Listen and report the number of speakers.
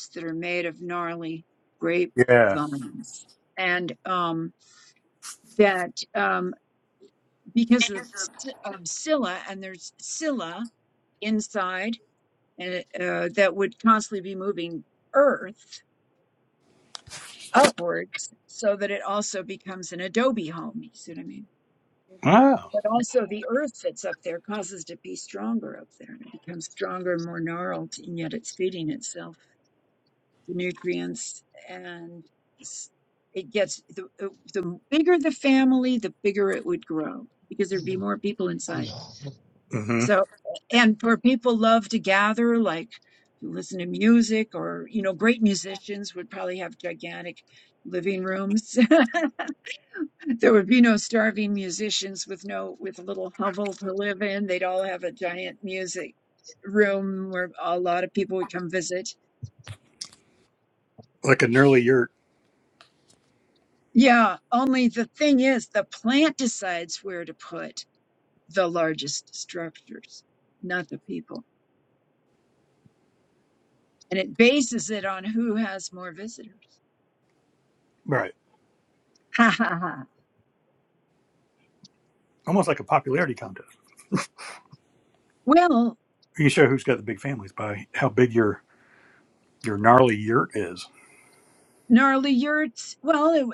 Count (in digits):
2